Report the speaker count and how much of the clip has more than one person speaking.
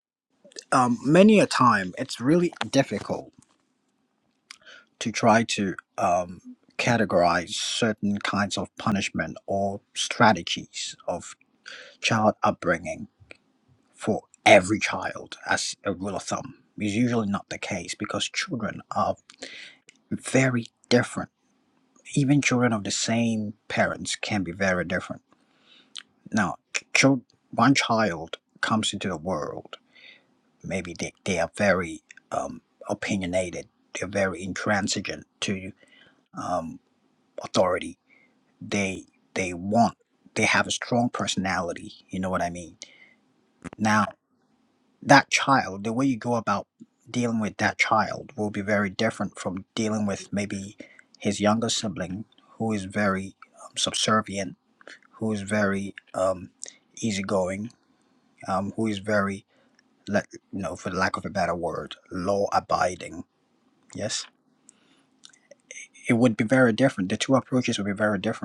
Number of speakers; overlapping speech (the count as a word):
one, no overlap